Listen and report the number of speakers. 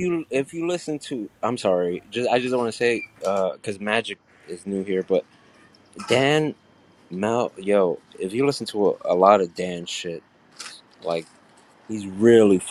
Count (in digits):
1